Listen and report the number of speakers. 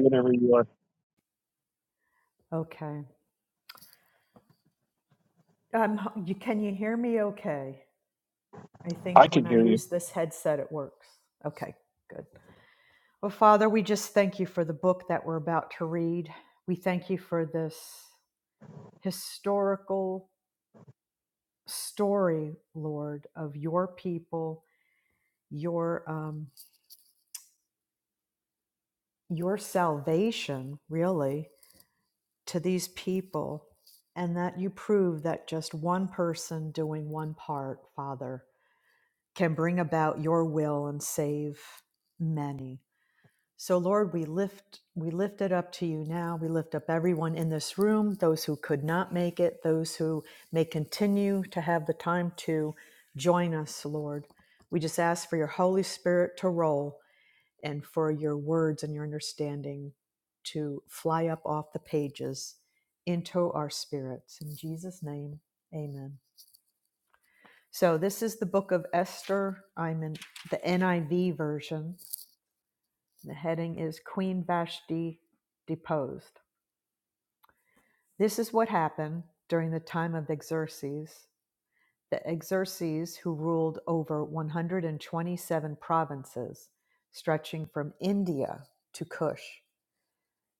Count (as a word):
two